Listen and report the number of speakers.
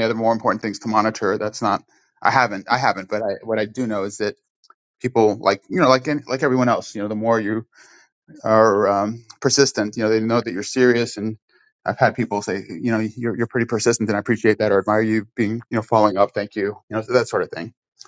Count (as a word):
one